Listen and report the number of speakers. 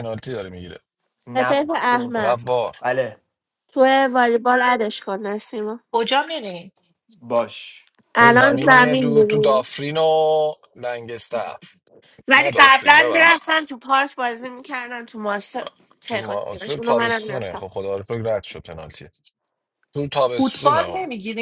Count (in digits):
4